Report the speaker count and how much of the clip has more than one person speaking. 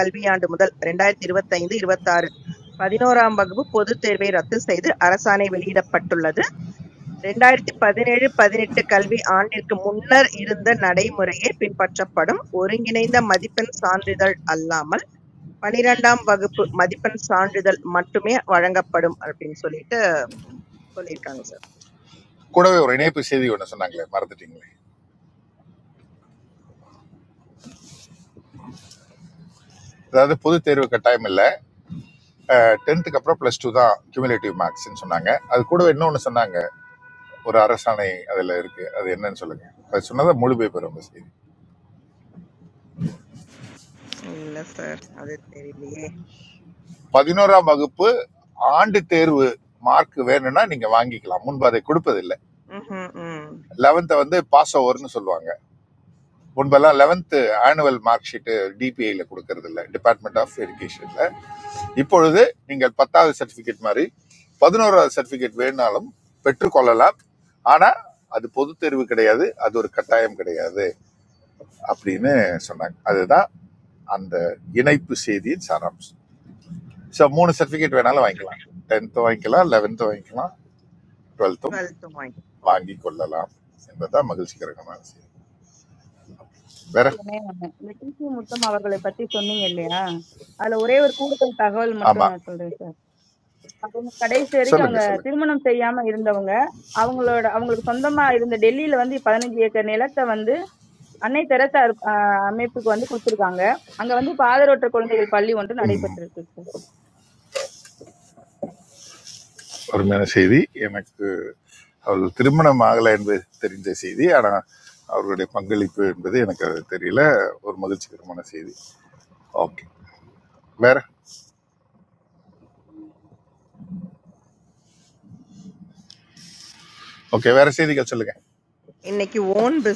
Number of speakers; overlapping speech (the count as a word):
three, about 1%